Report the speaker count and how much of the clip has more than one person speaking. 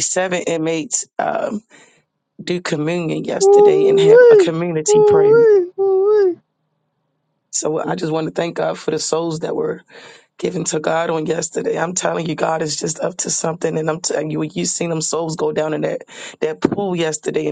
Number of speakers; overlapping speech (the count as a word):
two, about 9%